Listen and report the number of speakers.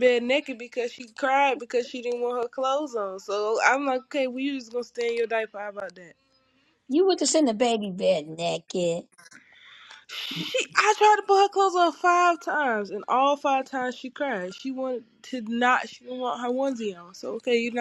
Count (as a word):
two